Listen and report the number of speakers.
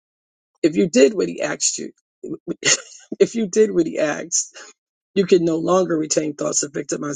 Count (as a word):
one